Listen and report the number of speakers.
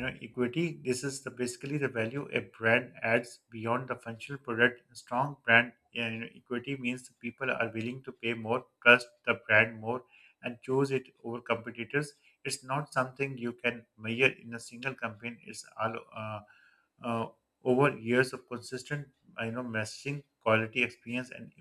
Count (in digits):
1